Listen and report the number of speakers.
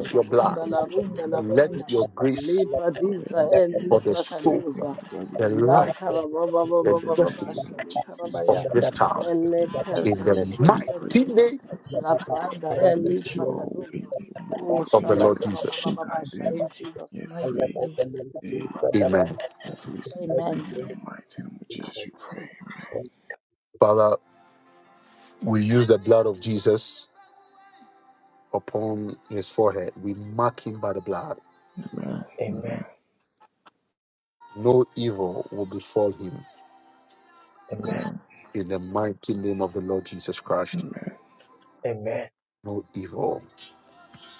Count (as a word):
four